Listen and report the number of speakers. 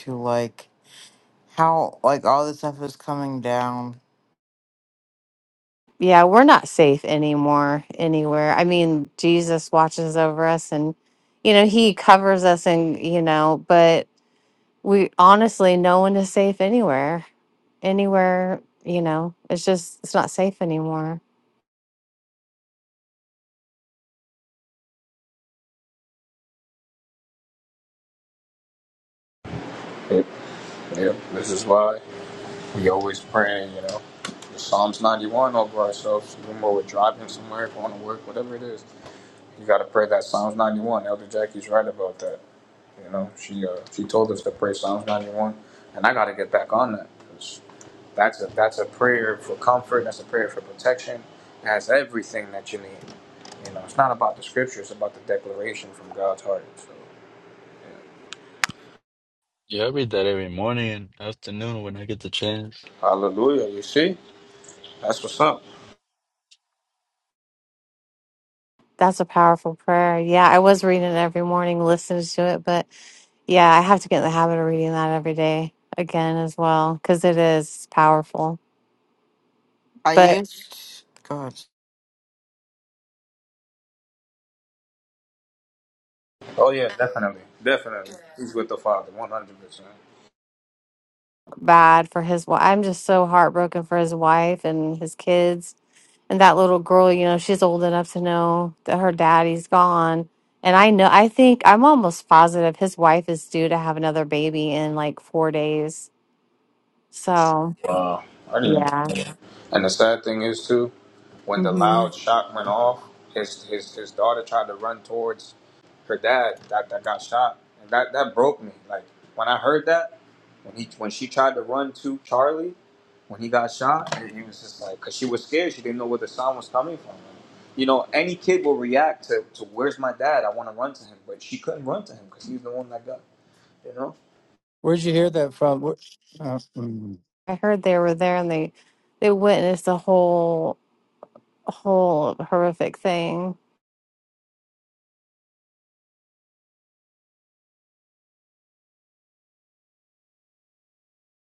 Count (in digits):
5